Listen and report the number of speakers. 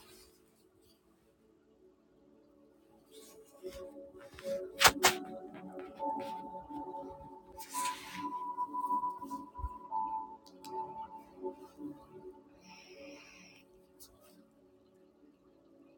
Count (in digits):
0